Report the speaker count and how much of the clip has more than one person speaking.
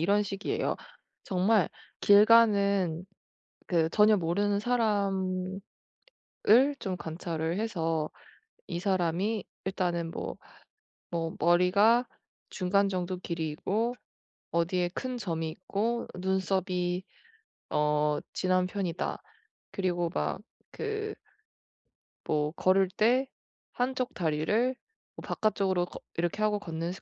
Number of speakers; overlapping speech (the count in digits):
1, no overlap